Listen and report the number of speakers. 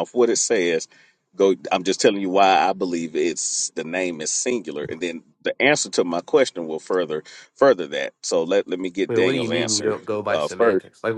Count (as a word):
two